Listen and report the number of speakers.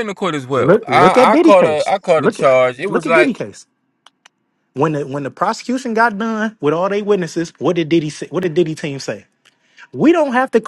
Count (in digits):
2